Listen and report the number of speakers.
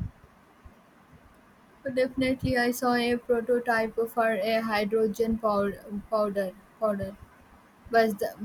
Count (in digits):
1